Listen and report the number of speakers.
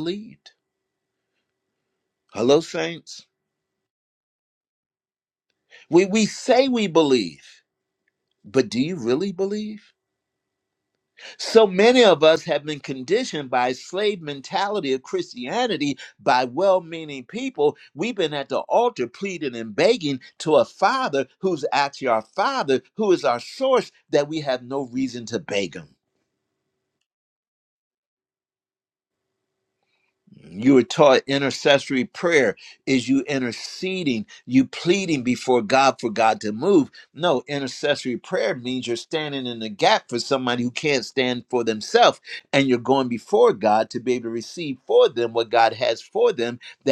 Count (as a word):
one